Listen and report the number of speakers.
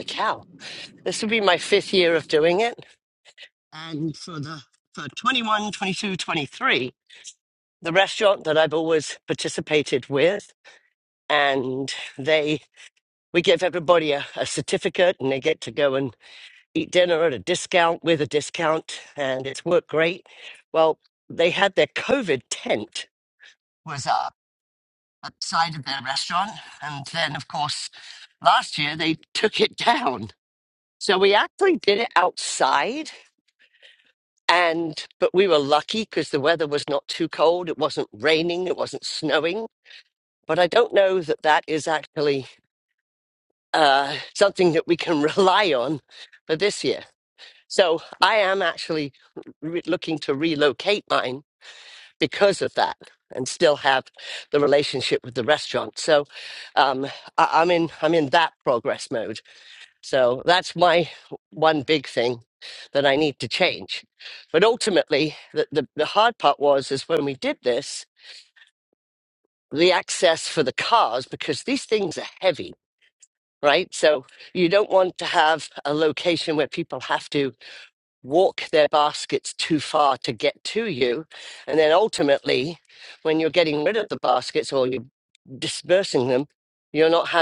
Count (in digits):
1